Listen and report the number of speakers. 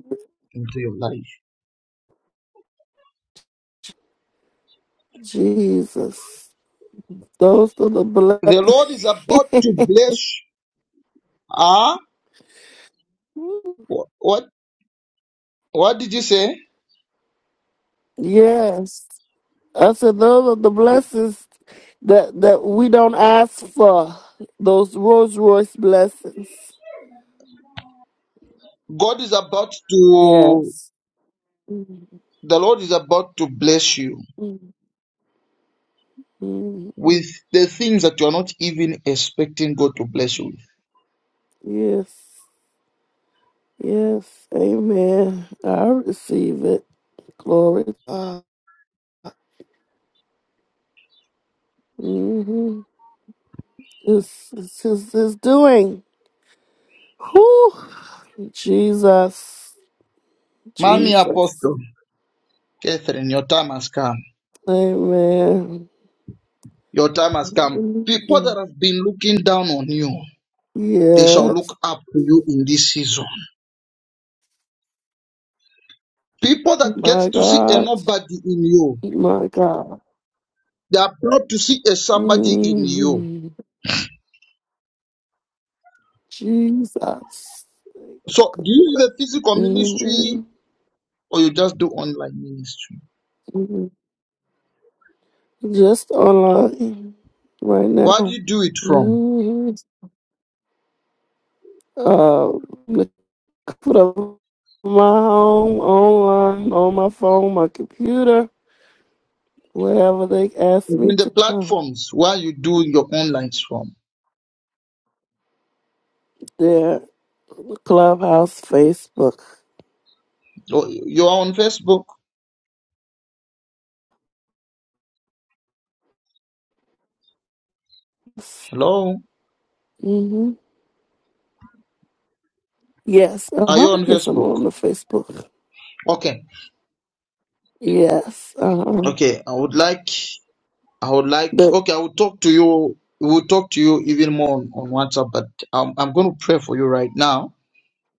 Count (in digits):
2